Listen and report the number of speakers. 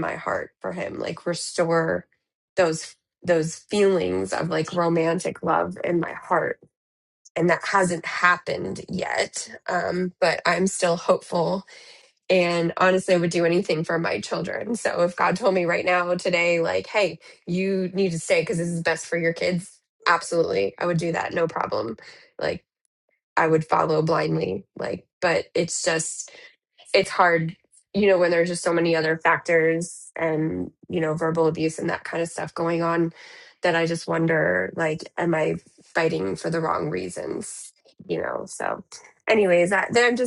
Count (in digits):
1